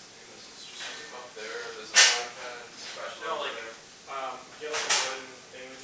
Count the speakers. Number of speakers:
two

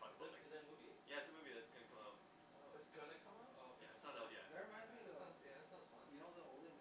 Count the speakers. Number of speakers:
three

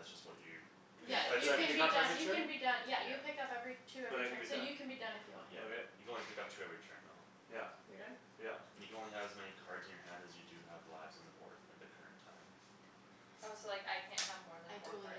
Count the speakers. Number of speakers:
four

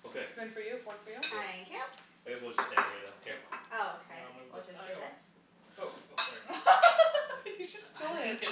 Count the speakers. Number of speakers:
four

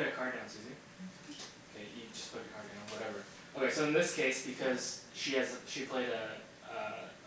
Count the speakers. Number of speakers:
one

